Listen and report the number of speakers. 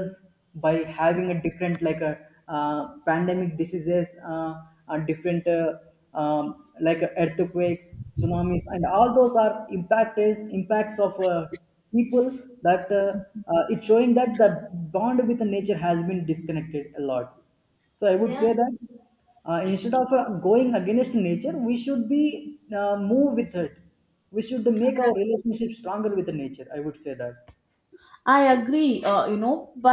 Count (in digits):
2